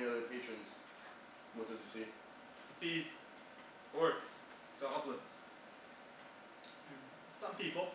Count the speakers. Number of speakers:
two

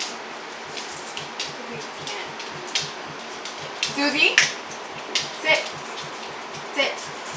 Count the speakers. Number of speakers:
one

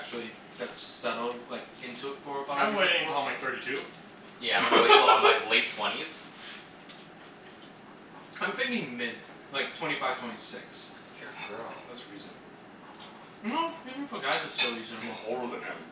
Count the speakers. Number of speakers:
four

